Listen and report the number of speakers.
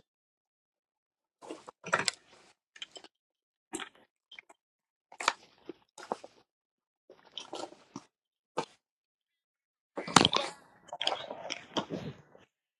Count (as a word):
zero